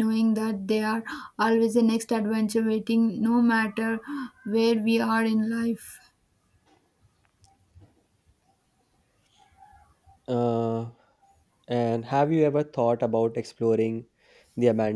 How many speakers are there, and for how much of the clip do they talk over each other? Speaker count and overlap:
2, no overlap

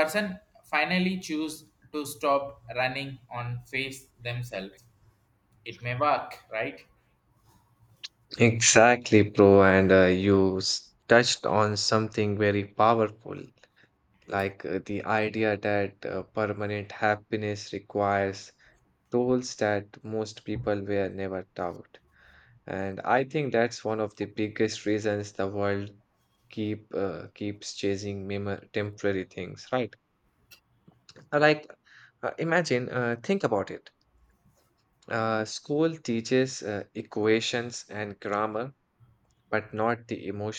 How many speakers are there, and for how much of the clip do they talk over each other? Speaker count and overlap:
2, no overlap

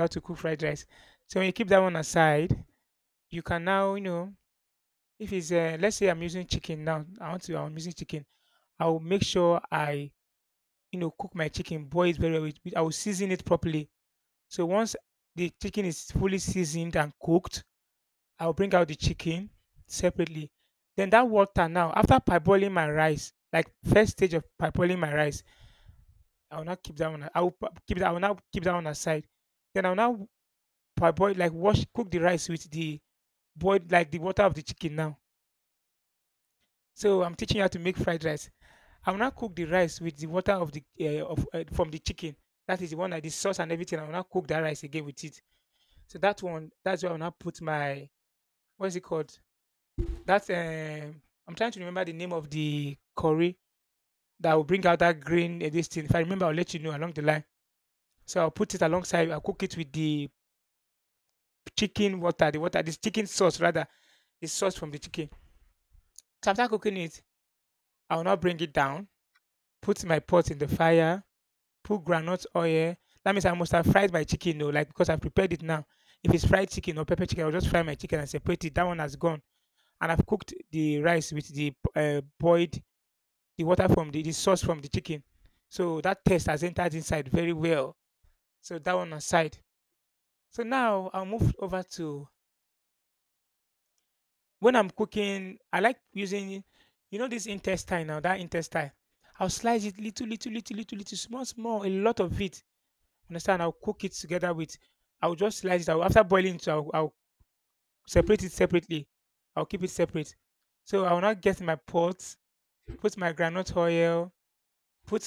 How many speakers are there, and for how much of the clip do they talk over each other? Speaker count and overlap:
1, no overlap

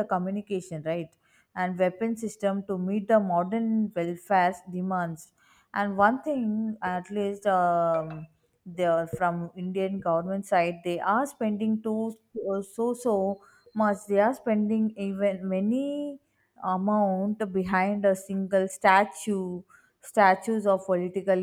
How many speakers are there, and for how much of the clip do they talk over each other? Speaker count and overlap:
1, no overlap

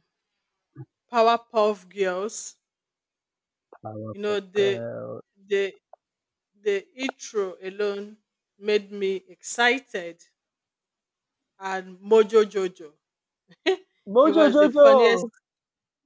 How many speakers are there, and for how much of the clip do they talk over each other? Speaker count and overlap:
2, about 6%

